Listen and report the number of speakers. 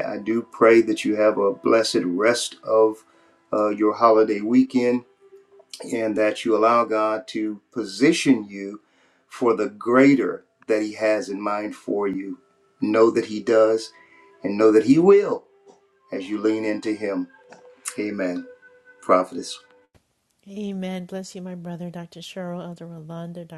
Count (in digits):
2